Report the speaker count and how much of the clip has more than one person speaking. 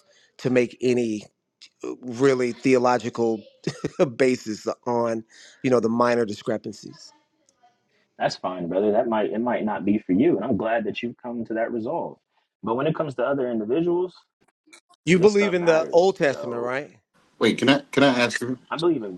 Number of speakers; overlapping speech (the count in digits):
3, about 6%